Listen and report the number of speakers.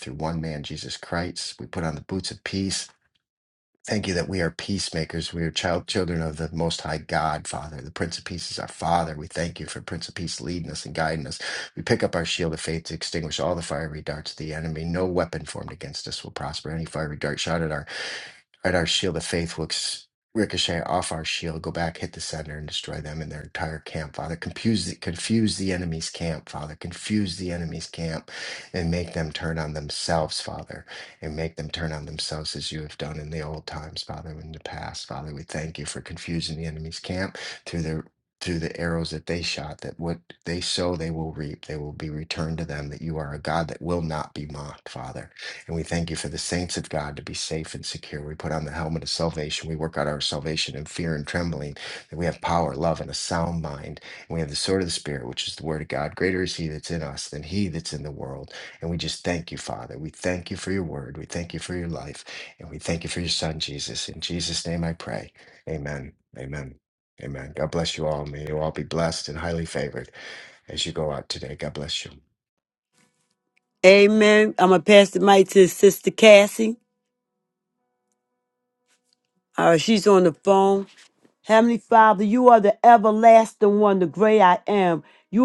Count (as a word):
two